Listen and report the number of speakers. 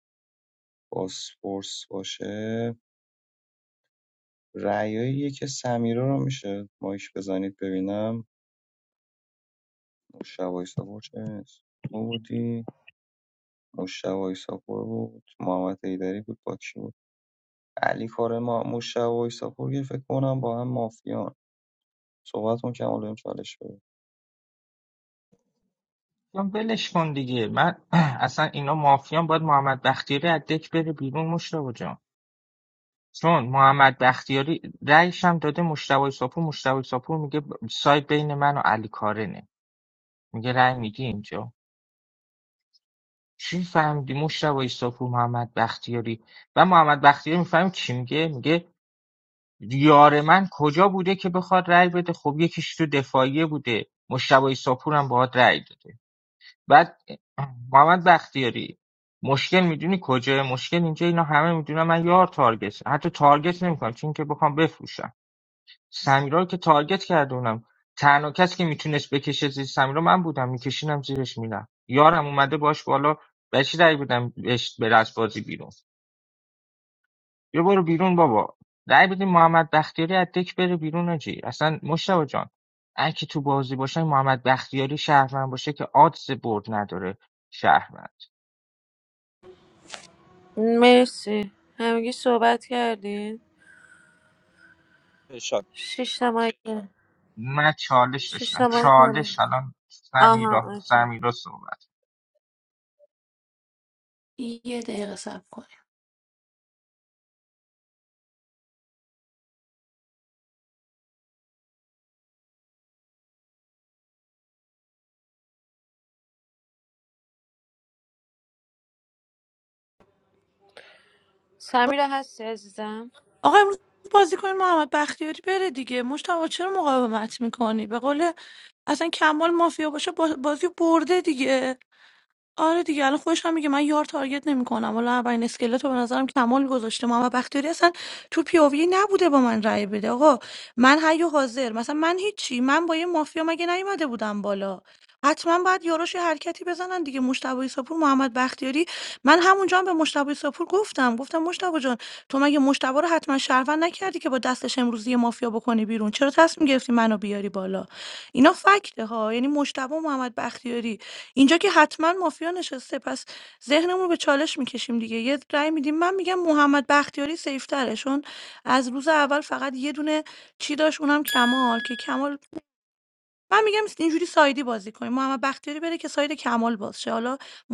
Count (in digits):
4